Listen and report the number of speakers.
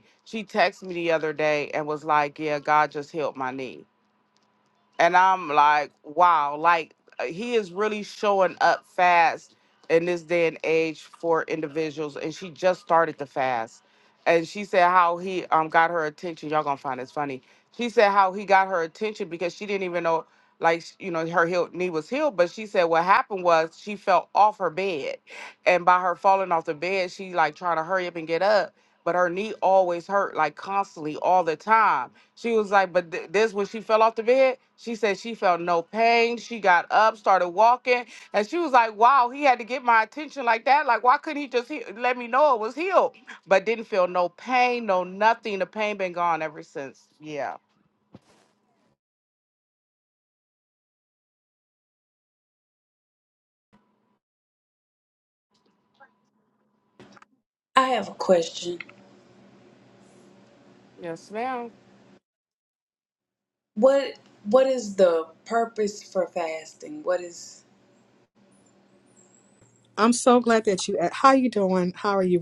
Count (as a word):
three